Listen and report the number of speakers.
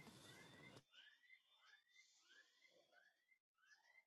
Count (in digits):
0